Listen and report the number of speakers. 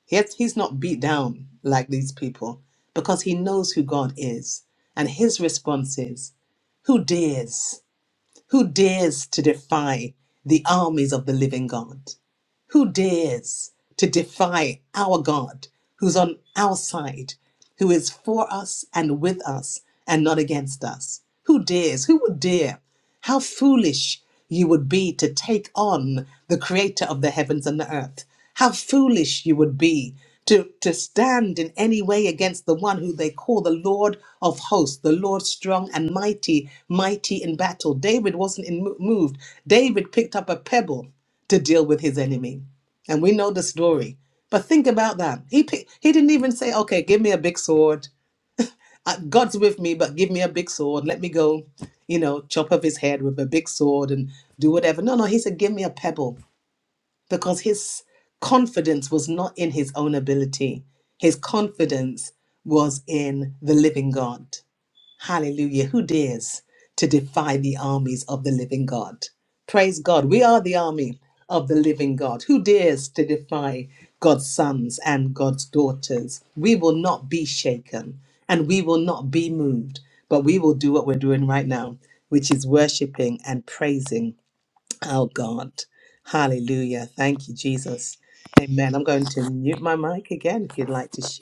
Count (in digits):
1